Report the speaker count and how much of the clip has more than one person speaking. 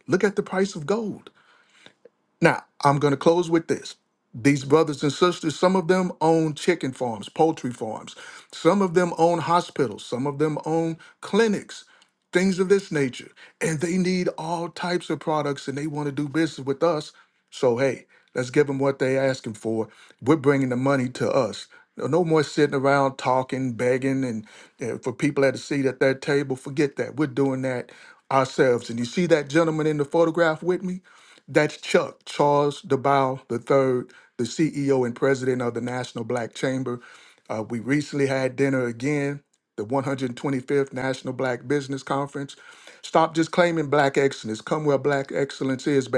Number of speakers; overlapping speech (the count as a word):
one, no overlap